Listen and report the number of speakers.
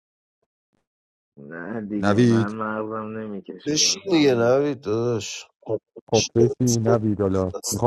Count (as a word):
three